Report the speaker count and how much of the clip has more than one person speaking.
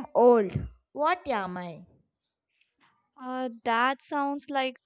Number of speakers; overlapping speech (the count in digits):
2, no overlap